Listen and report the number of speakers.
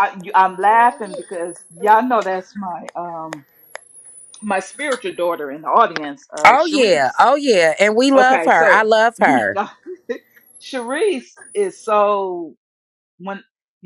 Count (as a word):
two